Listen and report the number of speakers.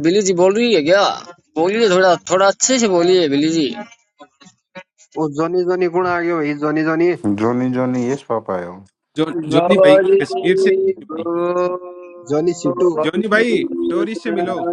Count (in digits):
4